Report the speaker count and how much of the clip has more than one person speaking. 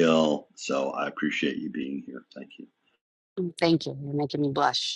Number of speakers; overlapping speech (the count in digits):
2, no overlap